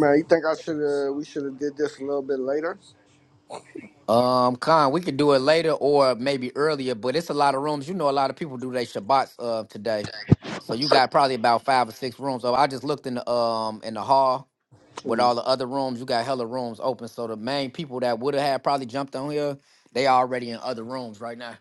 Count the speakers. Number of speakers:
2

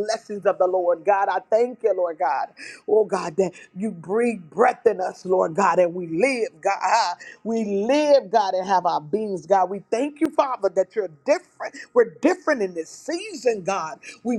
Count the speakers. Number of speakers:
1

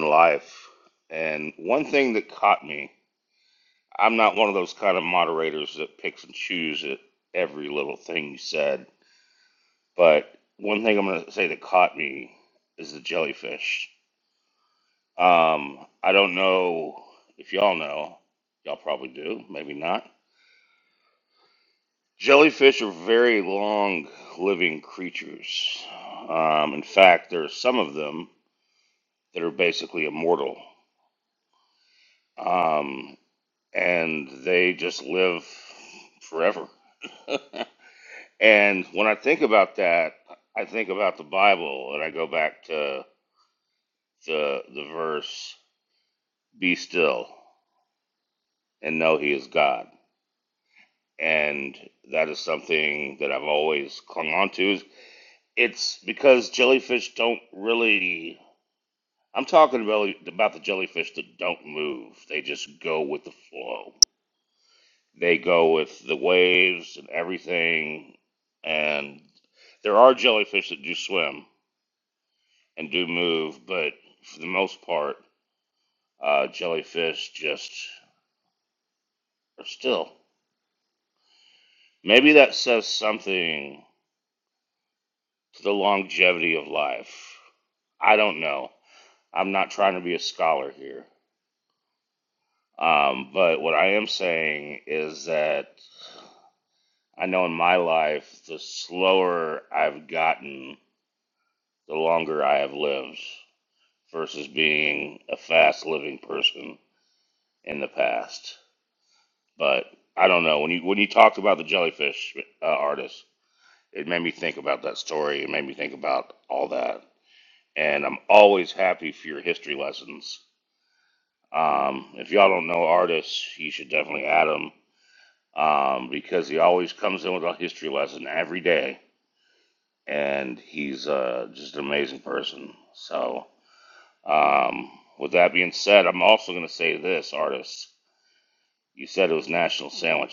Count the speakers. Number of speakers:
1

